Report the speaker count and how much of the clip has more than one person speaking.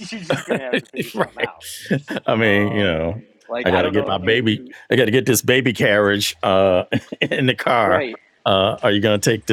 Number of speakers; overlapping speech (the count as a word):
two, about 22%